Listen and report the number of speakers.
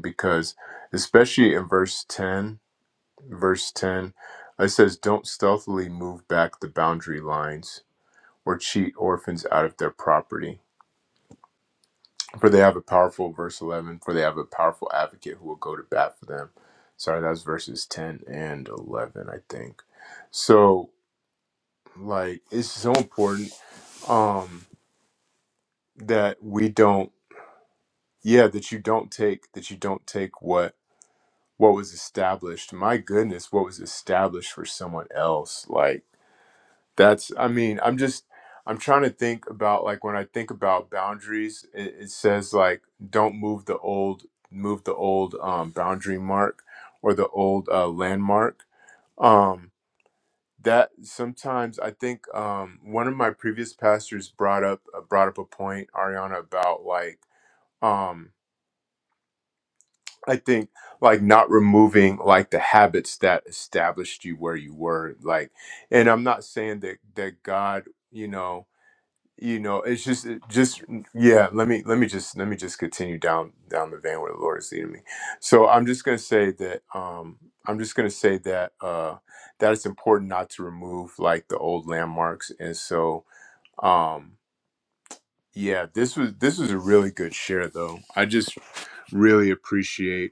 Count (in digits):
1